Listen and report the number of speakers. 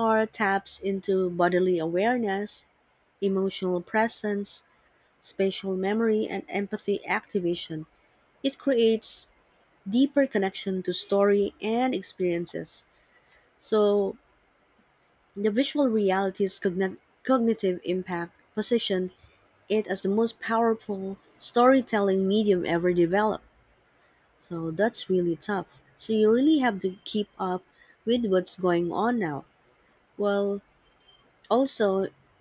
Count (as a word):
one